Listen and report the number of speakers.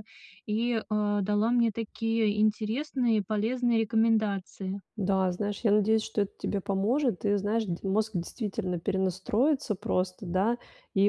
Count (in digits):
2